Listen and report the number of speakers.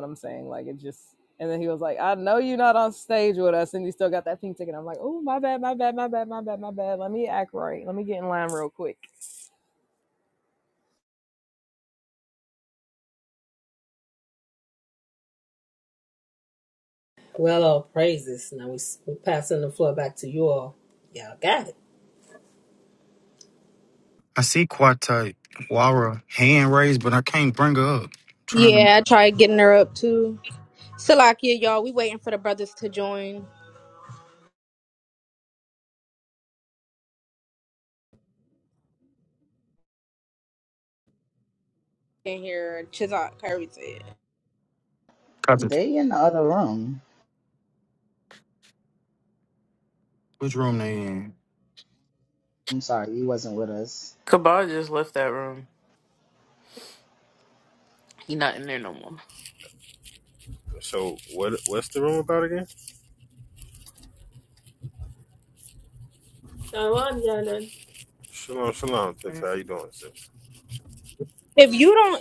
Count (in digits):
7